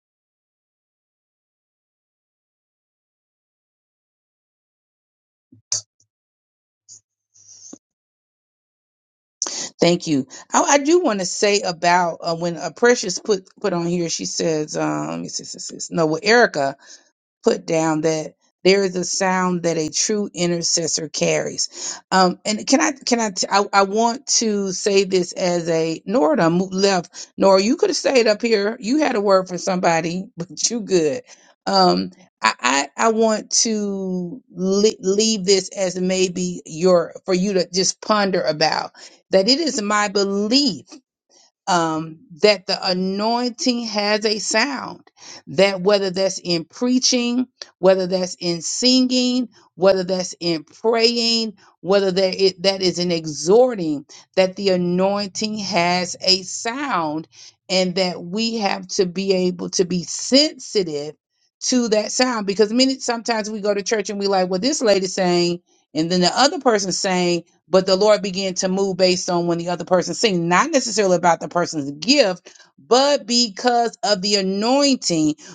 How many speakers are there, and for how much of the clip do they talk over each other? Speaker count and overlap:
one, no overlap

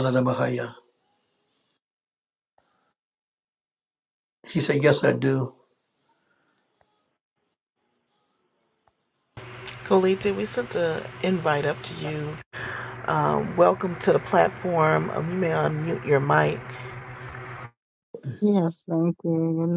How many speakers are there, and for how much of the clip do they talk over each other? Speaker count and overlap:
three, no overlap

